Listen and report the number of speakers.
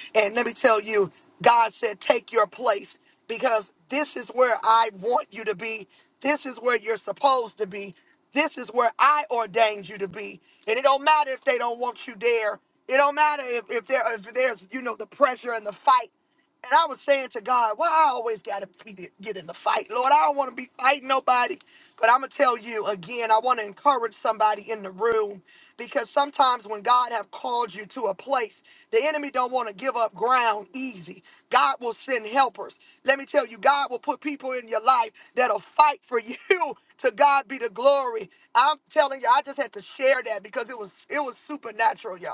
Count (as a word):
one